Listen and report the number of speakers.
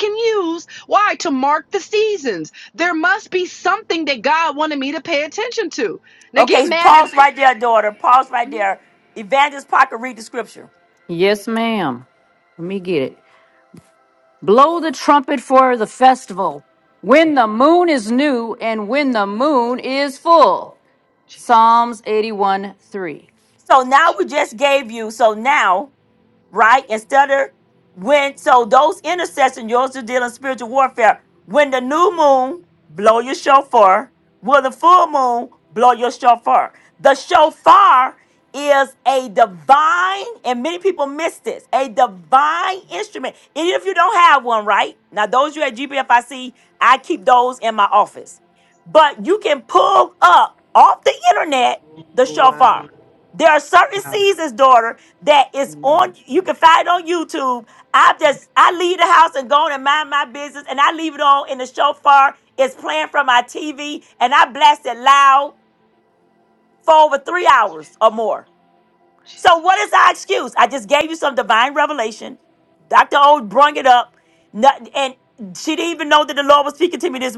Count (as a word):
three